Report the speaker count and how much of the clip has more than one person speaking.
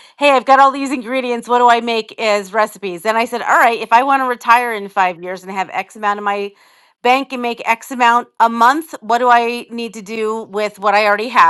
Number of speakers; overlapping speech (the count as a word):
one, no overlap